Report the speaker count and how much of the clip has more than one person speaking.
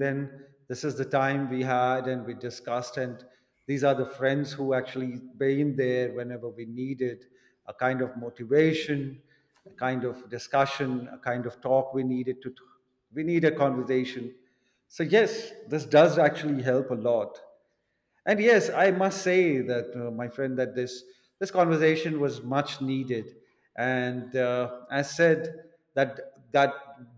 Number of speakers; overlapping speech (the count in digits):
1, no overlap